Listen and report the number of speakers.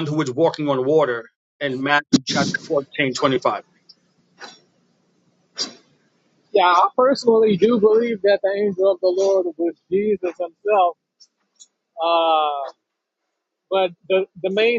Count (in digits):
2